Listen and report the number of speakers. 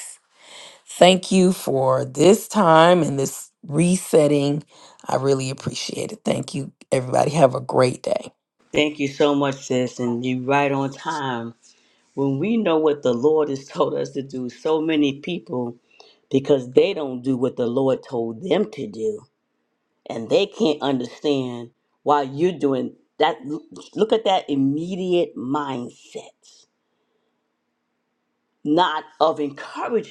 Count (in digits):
2